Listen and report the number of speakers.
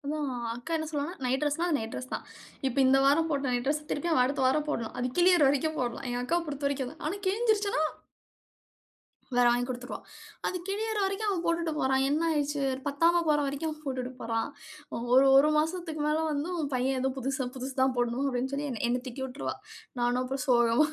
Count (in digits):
1